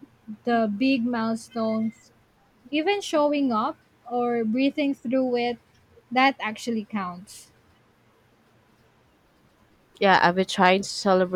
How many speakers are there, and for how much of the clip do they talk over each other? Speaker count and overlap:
2, no overlap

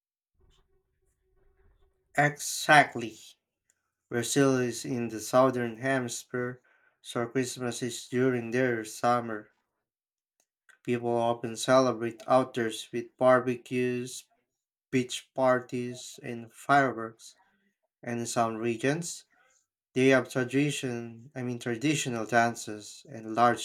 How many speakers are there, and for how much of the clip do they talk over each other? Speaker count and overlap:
1, no overlap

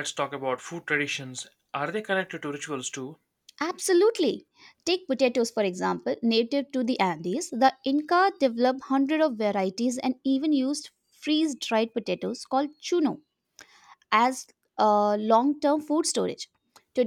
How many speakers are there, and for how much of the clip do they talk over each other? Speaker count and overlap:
2, no overlap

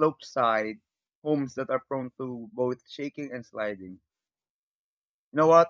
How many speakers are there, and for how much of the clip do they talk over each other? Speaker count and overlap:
1, no overlap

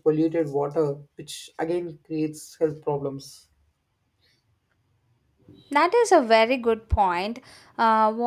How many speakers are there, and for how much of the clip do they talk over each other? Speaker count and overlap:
2, no overlap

